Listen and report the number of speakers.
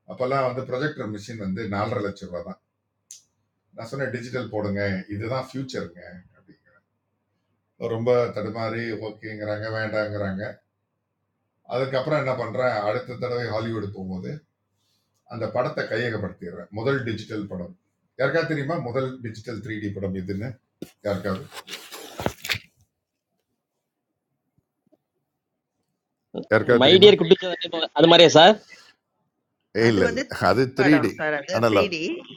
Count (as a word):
three